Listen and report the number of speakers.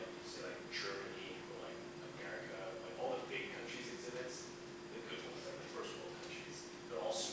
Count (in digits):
1